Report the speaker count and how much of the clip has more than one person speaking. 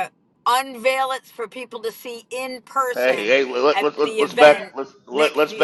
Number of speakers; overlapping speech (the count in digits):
2, about 34%